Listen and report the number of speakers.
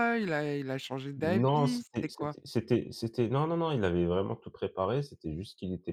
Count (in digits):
2